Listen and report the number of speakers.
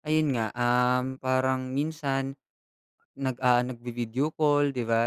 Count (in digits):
1